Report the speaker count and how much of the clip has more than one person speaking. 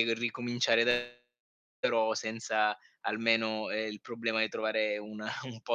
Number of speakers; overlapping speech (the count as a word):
one, no overlap